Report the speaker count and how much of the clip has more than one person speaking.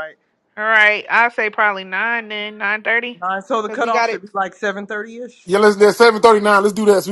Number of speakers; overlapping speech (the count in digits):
3, about 7%